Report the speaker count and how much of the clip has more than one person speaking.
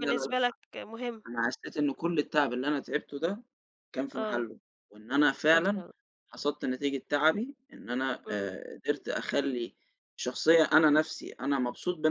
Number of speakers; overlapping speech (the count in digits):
2, about 10%